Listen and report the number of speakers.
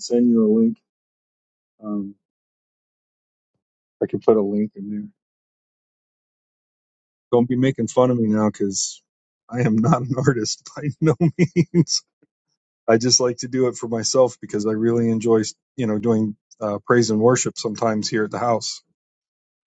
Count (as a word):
one